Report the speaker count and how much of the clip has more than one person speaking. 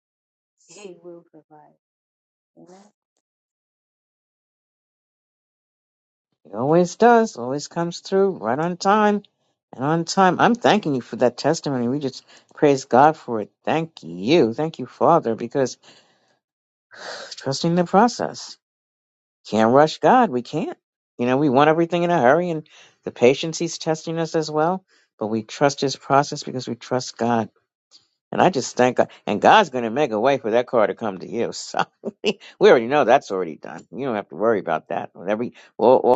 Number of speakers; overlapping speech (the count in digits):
2, no overlap